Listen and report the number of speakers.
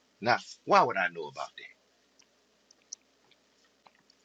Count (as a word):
one